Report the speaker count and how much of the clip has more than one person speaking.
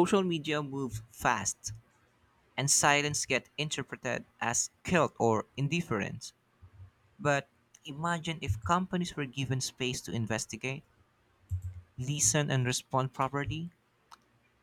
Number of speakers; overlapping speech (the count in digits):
1, no overlap